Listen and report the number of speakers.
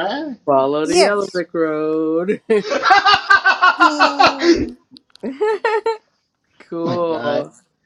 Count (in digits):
3